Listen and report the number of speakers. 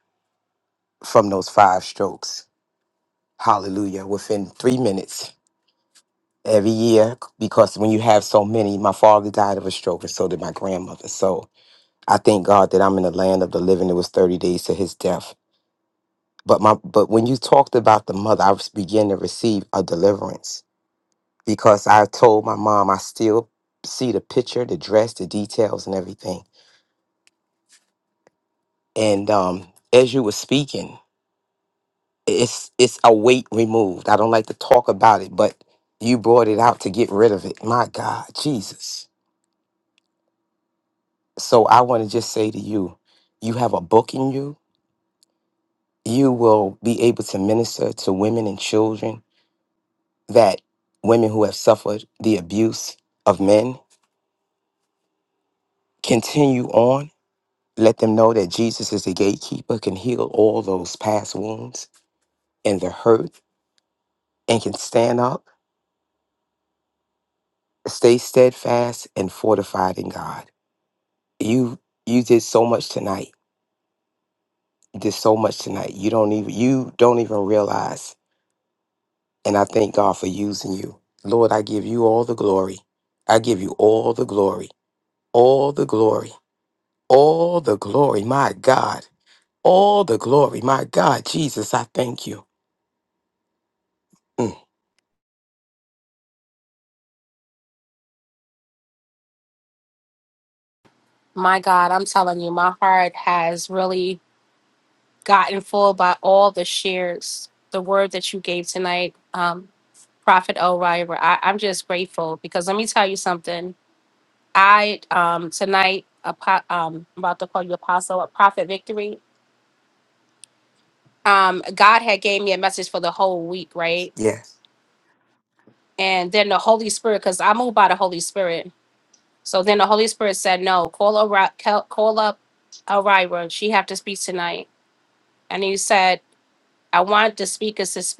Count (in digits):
2